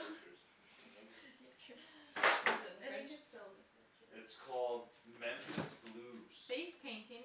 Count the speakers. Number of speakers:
three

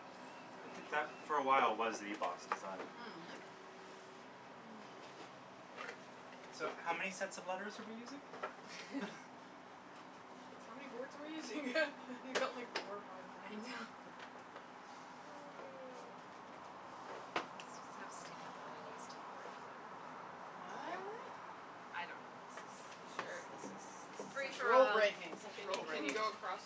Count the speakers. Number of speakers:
four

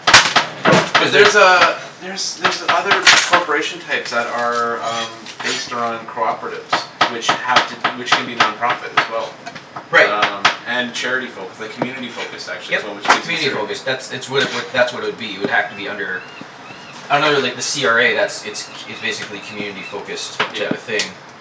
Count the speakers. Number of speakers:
two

